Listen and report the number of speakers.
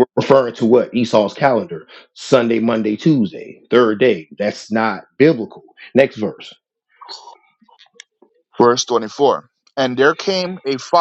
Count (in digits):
2